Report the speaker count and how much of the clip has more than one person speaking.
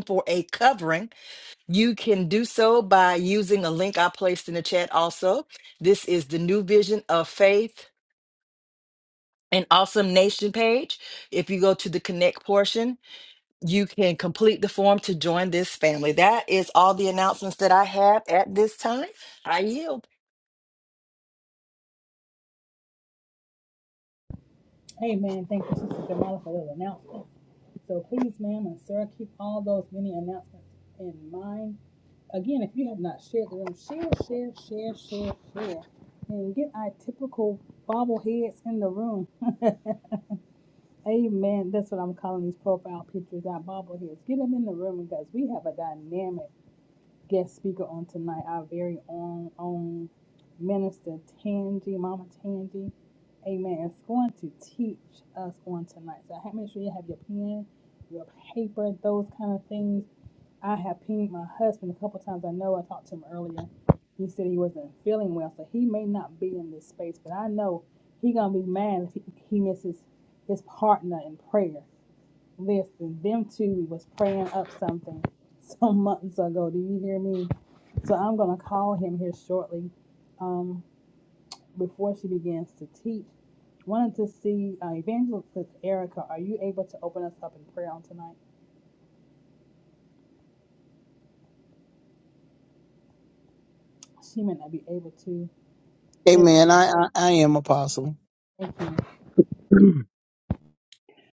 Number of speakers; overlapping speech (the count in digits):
3, under 1%